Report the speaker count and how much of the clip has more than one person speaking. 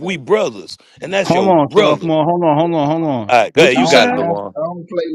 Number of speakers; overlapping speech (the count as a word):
three, about 44%